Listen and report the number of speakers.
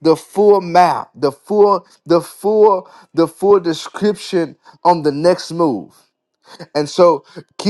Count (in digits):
1